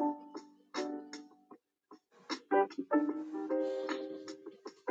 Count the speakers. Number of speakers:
0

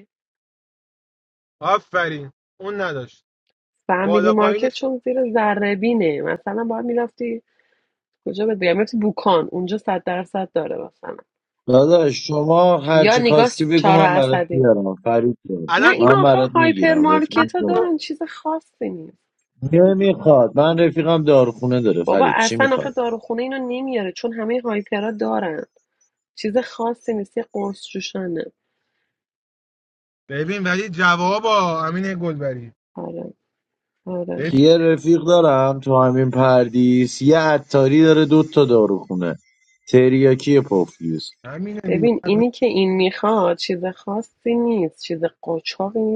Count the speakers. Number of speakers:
3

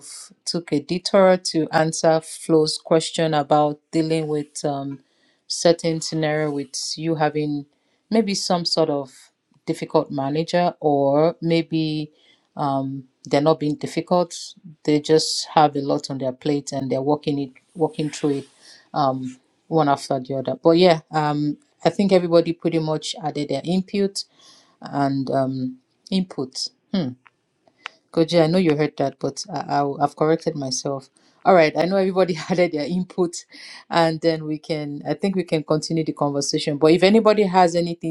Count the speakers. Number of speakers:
1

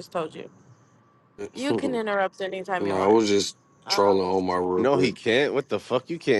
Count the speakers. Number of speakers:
3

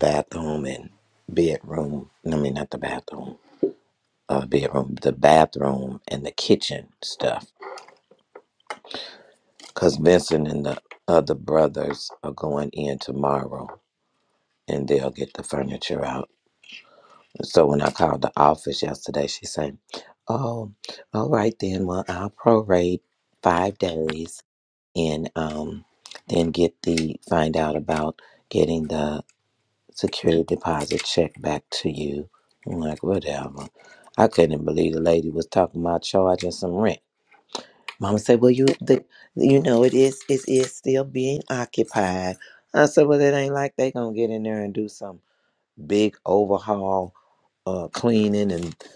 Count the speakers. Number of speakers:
1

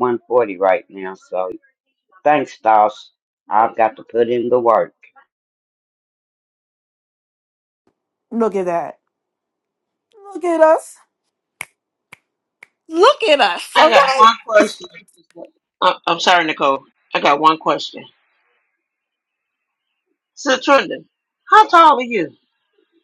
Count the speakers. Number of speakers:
3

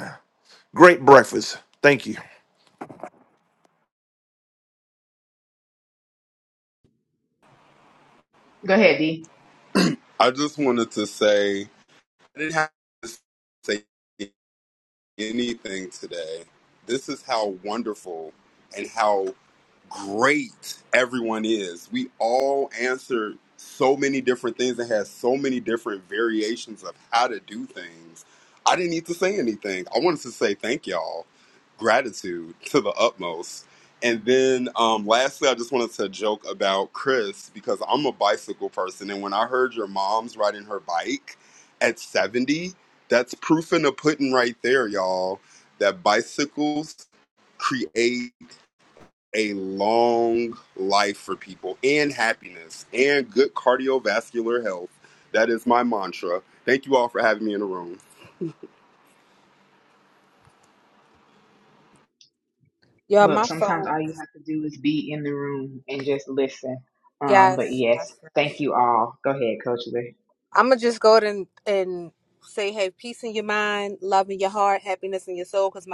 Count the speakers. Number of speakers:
4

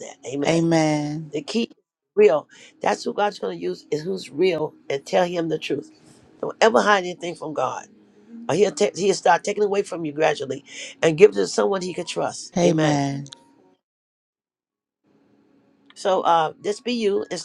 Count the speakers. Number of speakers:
2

